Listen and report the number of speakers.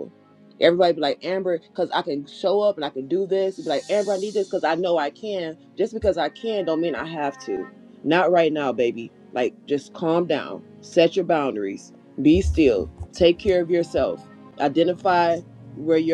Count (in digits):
1